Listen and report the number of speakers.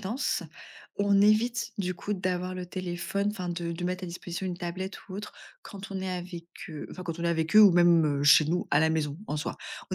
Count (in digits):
1